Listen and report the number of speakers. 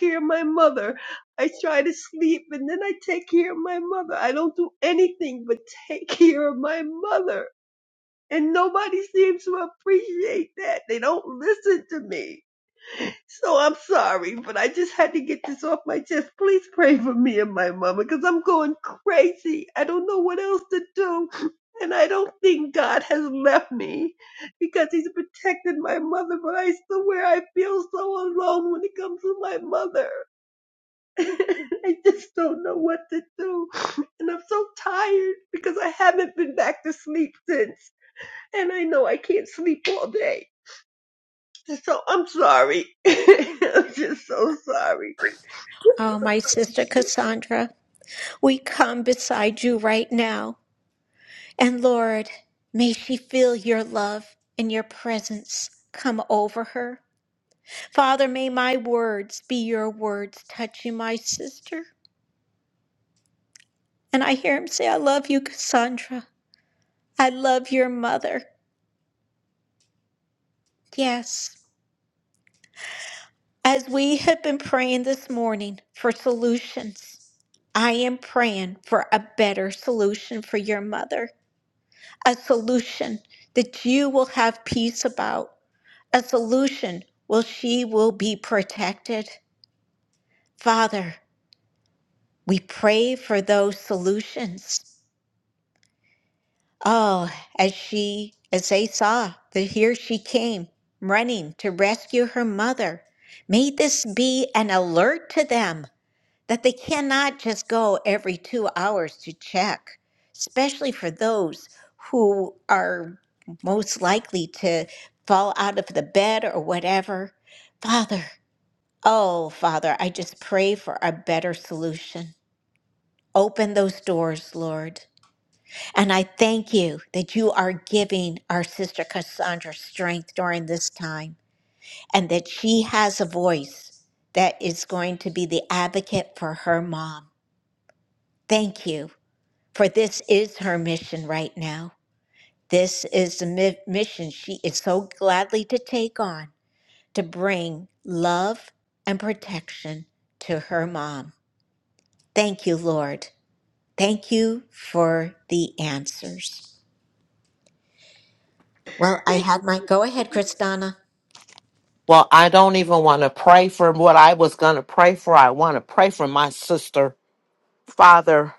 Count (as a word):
three